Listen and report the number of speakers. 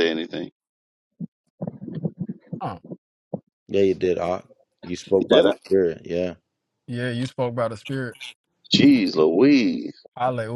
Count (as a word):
three